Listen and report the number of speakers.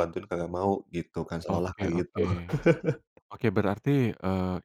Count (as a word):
two